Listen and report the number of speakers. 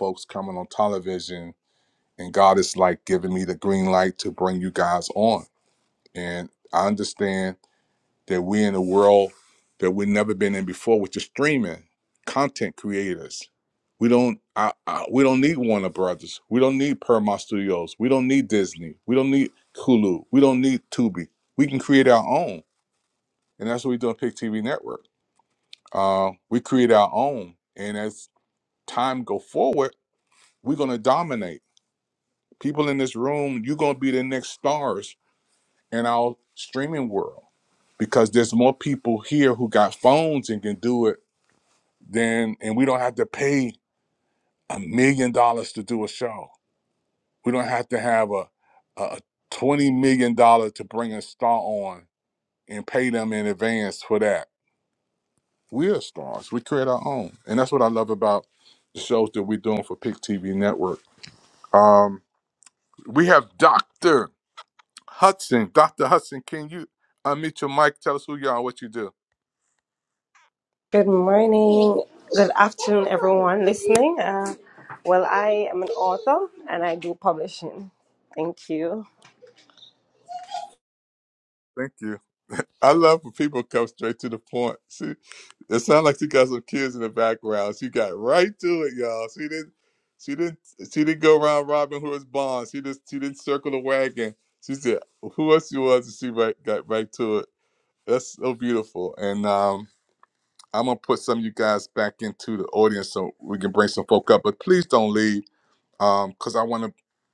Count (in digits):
2